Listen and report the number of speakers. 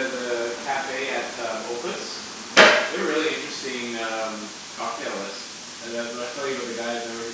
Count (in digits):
1